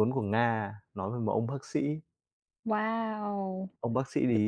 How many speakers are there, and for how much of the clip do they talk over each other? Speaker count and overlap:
2, no overlap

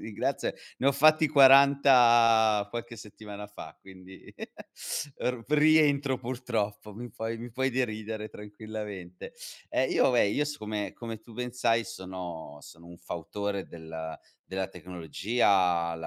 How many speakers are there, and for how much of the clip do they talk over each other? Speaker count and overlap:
1, no overlap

